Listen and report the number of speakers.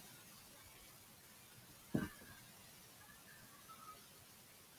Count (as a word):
zero